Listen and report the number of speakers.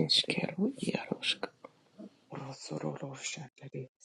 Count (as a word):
two